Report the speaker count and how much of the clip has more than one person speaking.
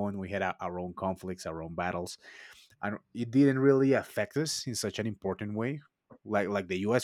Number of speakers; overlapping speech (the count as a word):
one, no overlap